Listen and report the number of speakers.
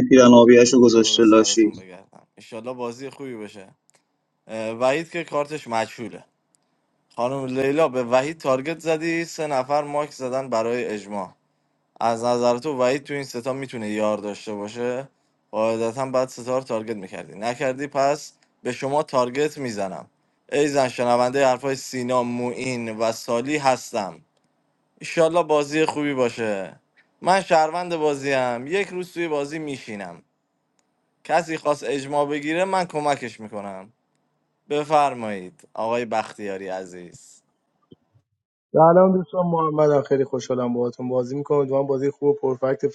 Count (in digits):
3